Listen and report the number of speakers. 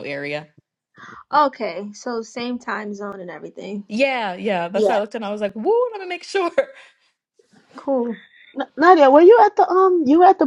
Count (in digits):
3